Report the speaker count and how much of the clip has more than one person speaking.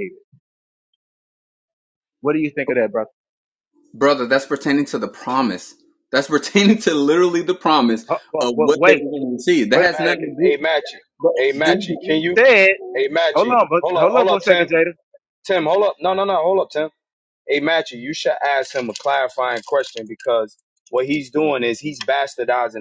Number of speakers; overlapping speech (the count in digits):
3, about 17%